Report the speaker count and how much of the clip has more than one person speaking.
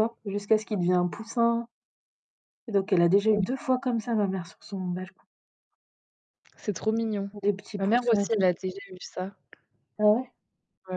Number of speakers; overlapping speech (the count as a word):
two, about 6%